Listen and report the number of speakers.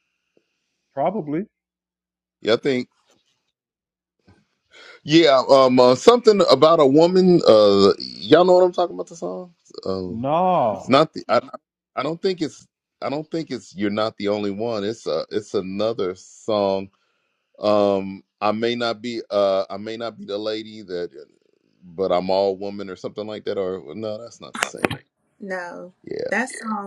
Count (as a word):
three